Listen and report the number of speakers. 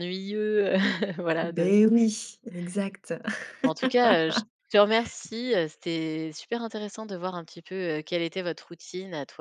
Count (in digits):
2